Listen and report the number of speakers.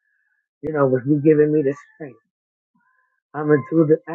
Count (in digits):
1